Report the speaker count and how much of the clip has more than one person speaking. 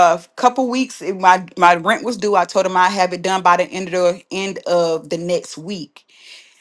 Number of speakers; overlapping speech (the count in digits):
1, no overlap